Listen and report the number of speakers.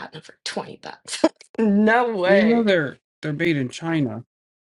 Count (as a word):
two